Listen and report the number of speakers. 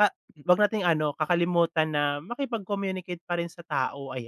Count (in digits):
1